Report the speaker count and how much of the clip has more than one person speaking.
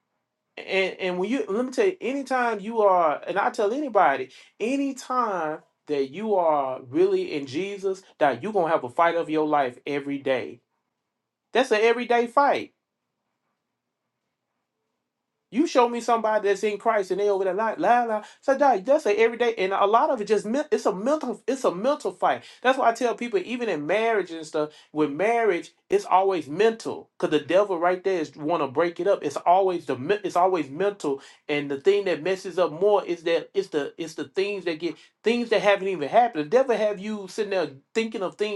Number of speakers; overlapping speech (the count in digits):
1, no overlap